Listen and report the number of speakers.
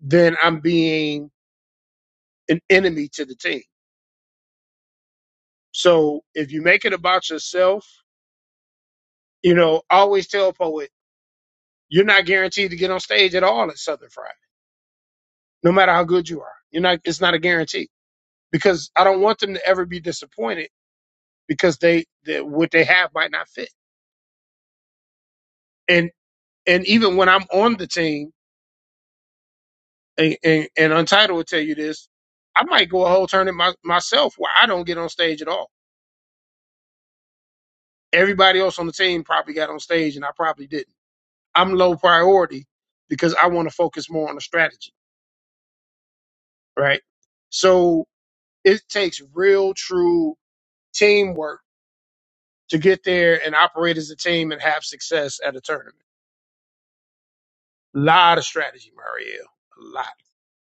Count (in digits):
1